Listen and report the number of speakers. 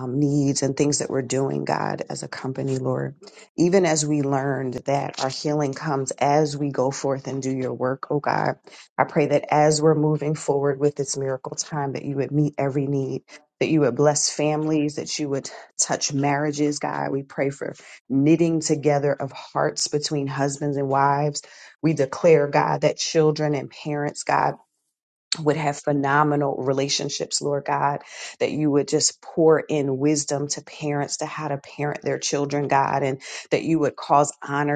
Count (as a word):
one